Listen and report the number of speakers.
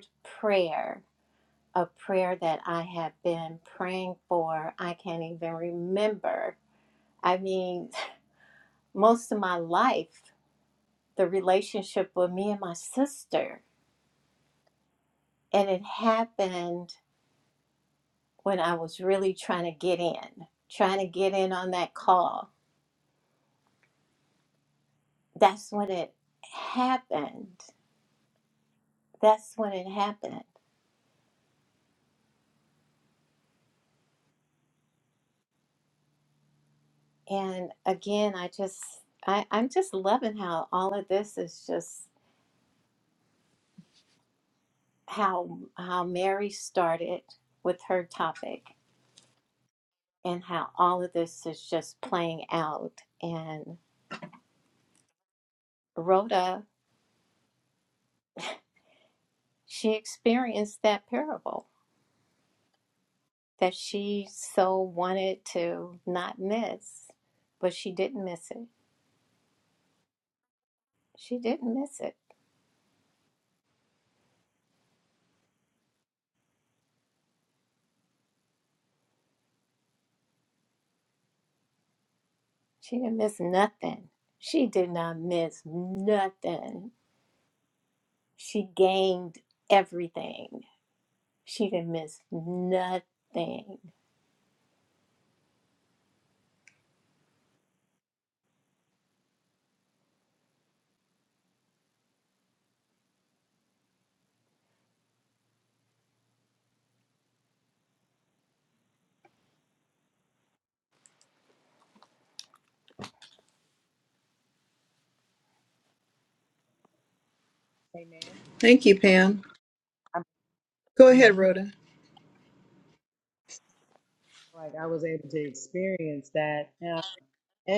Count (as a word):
three